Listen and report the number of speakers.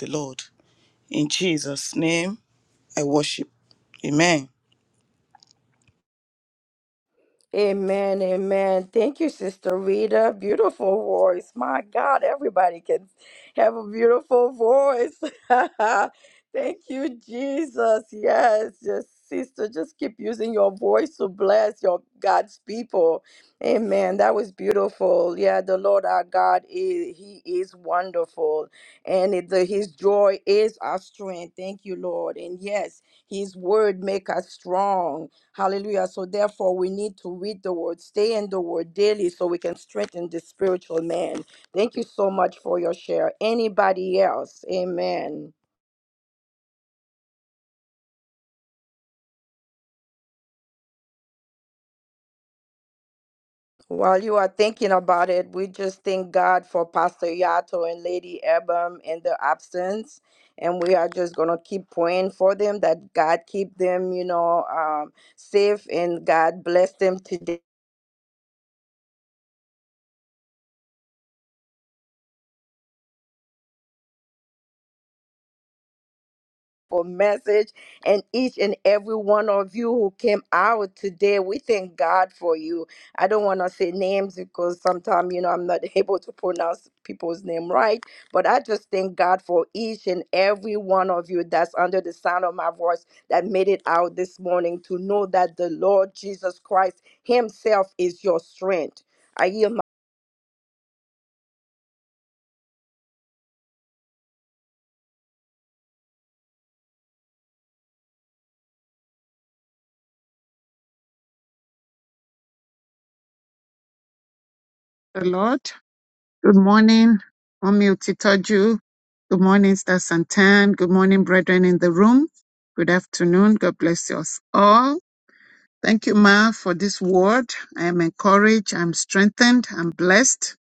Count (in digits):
3